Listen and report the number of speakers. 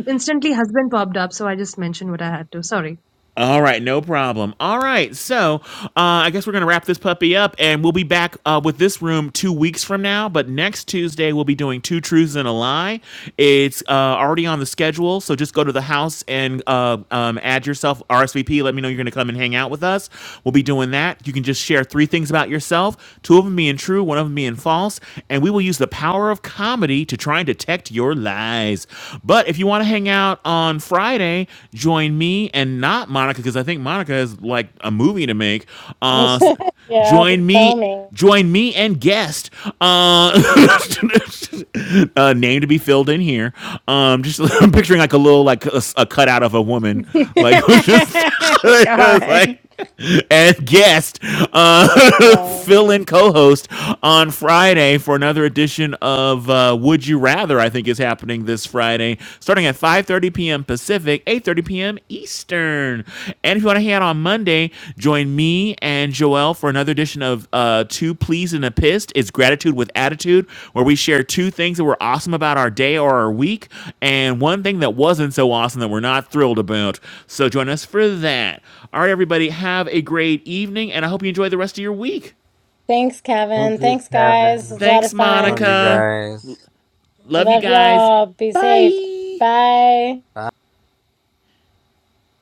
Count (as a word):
four